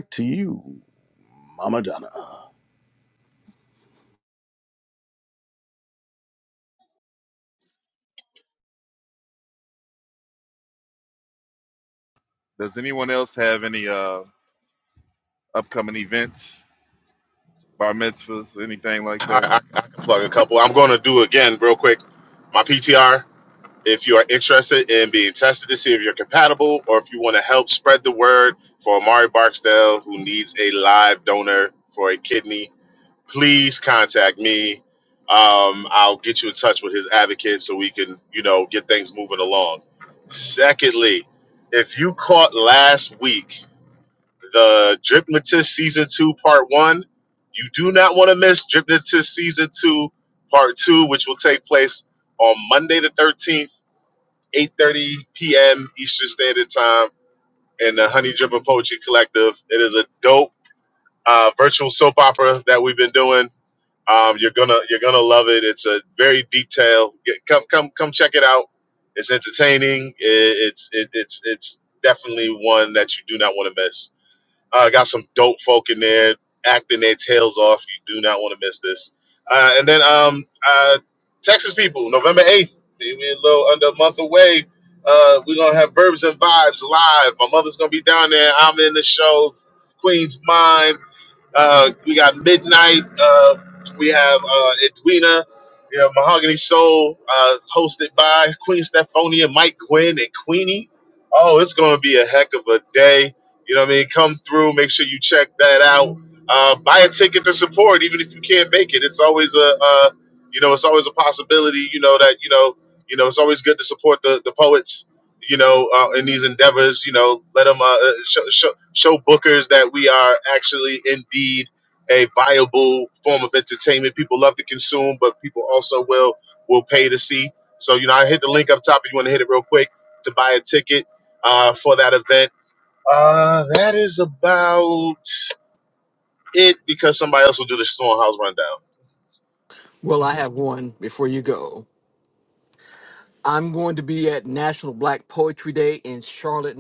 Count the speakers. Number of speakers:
4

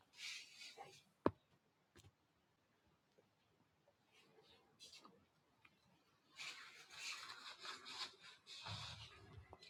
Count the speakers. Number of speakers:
0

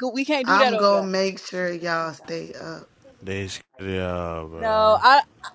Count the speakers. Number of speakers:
3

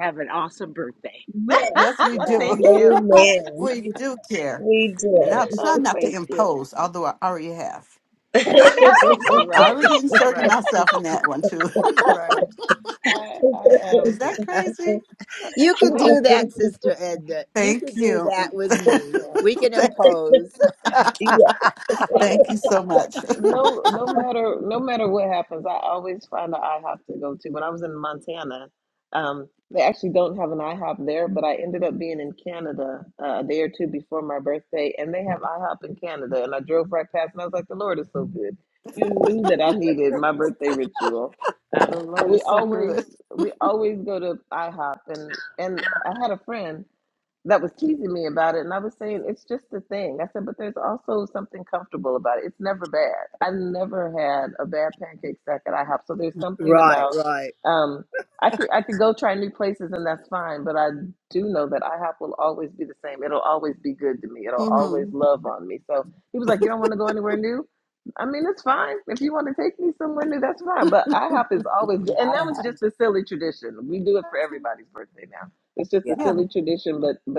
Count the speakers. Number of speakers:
5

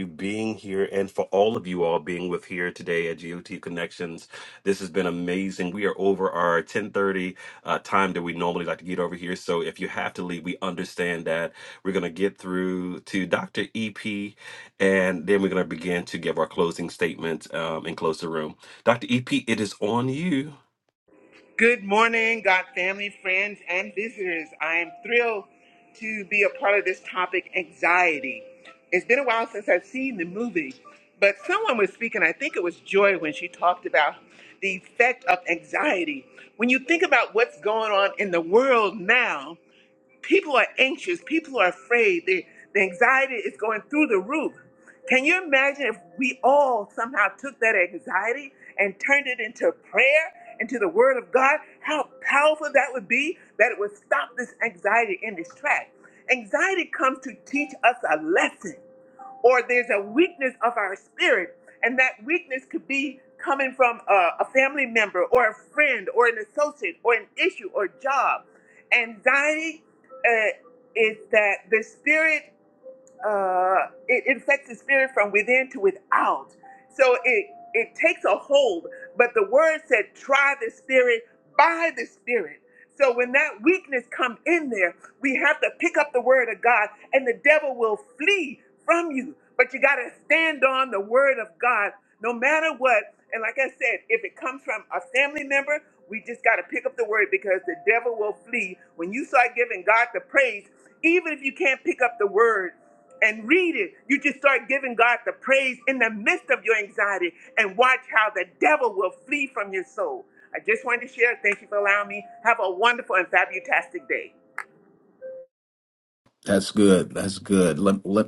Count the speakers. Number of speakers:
3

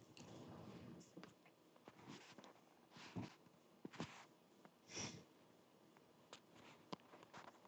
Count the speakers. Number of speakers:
0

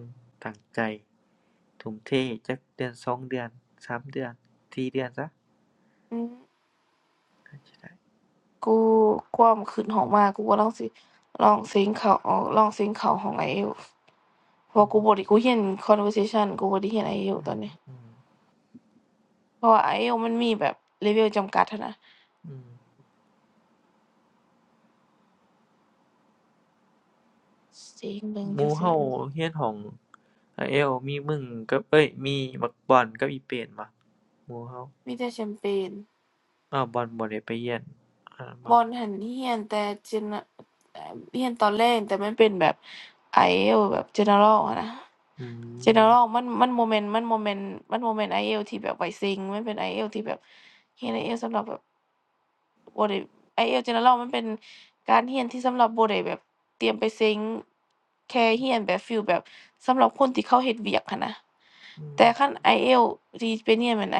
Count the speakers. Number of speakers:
2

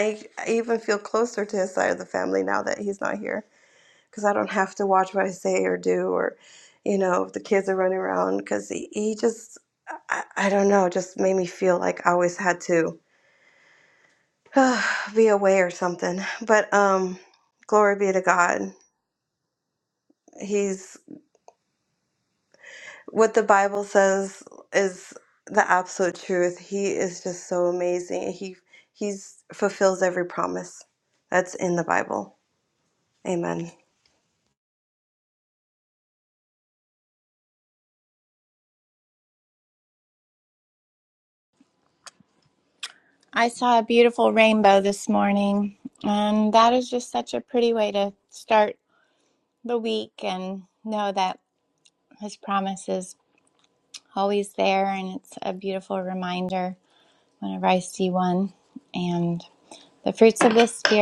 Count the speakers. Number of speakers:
2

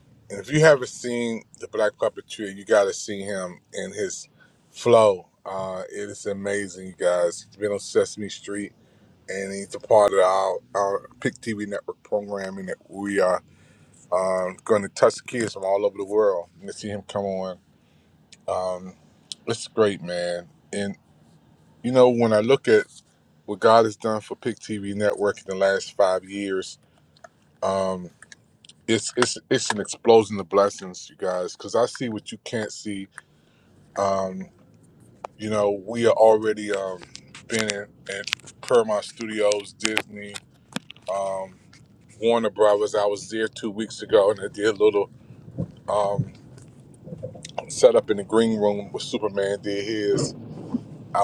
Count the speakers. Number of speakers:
1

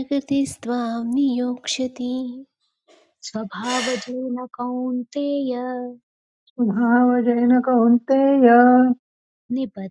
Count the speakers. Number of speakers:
3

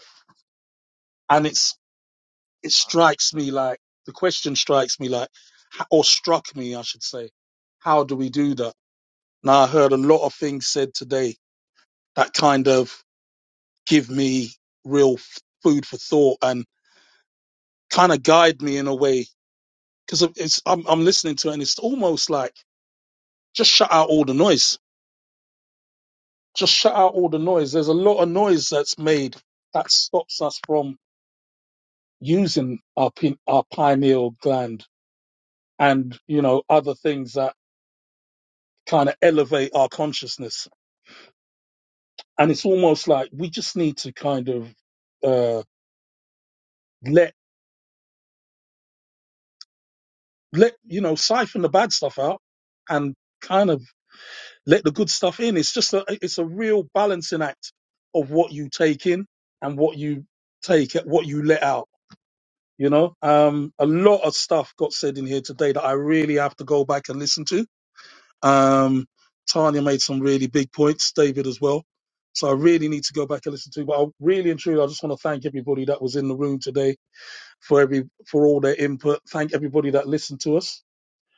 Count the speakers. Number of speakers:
1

